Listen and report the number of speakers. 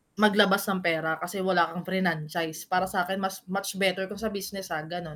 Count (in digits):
1